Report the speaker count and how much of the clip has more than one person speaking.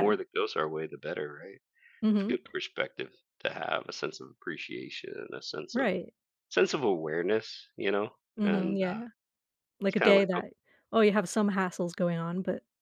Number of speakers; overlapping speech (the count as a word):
two, about 13%